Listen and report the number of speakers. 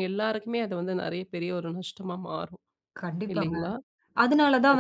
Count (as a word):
two